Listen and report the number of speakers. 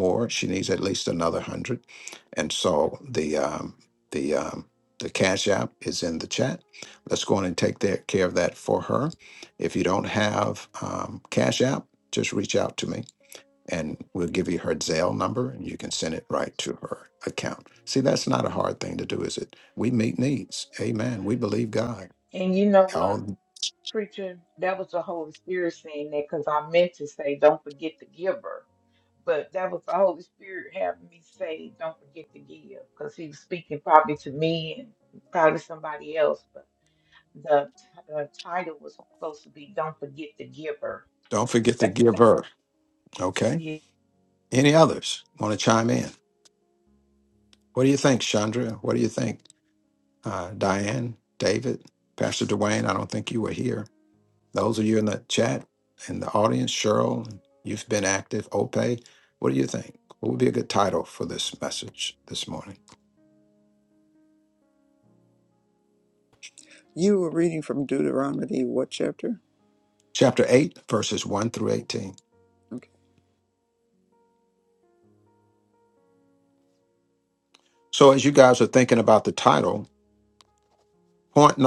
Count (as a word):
three